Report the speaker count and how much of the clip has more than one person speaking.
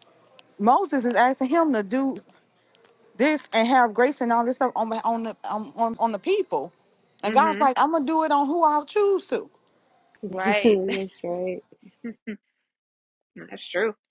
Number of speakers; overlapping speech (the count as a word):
three, about 6%